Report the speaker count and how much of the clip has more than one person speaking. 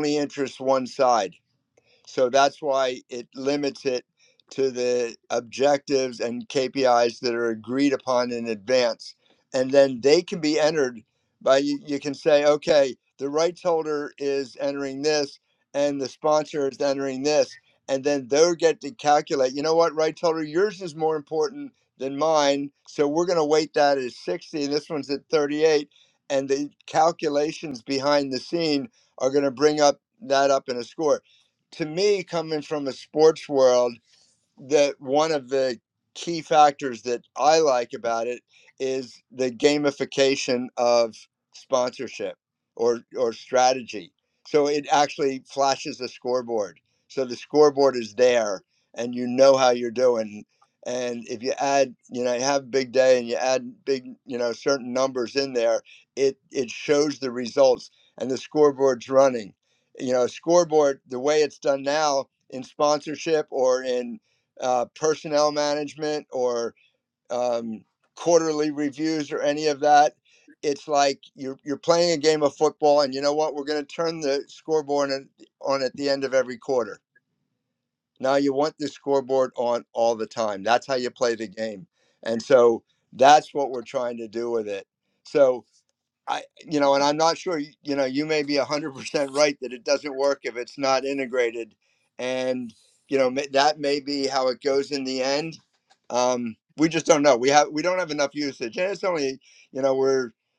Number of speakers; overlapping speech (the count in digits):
1, no overlap